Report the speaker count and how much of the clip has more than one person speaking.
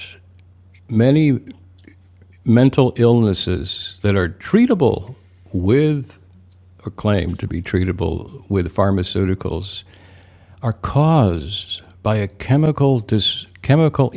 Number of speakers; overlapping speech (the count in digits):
1, no overlap